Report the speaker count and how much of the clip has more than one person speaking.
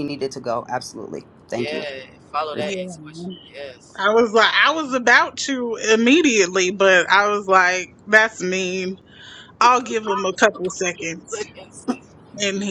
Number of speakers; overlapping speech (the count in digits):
3, about 5%